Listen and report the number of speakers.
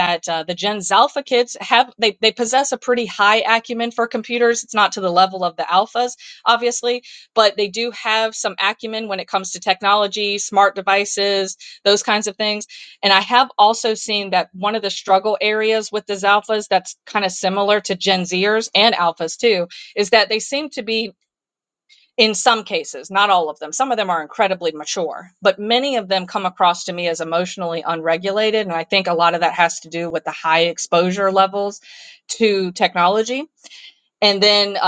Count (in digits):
1